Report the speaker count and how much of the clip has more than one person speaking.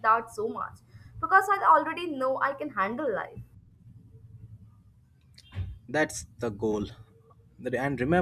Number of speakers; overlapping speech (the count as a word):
two, no overlap